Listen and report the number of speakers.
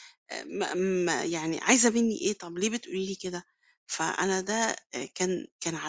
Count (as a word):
one